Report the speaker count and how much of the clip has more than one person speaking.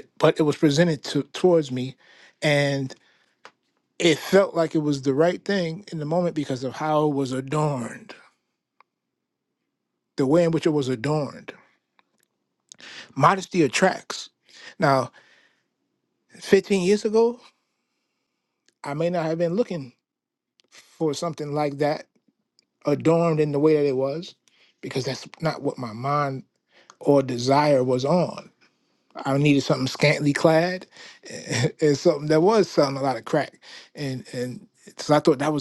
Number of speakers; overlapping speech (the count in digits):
1, no overlap